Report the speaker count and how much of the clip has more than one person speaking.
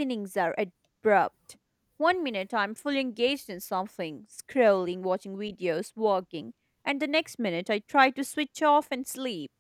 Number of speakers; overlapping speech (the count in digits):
1, no overlap